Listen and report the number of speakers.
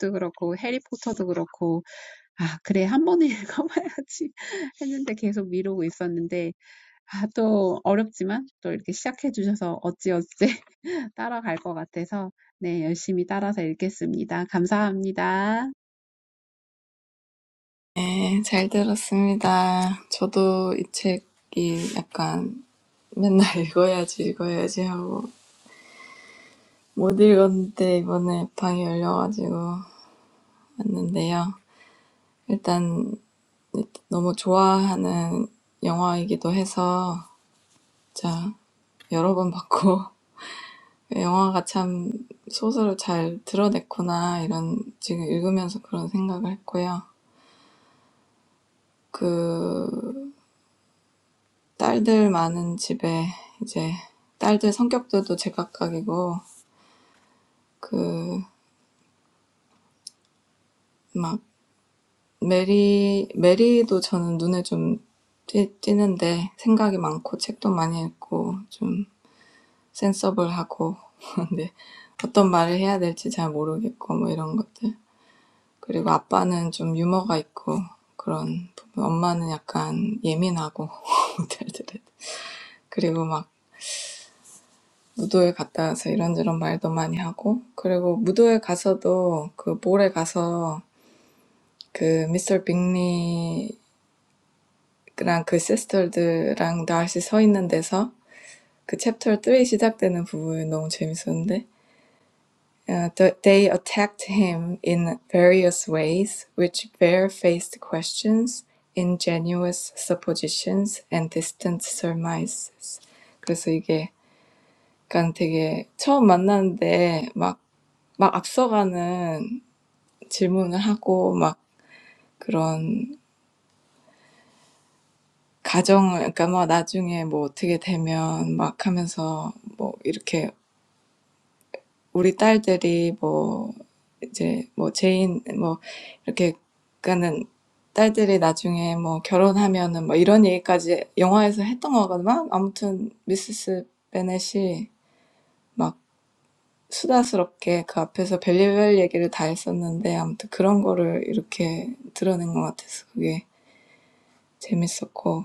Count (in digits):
2